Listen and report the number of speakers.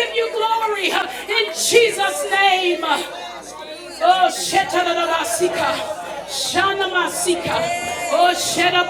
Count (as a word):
one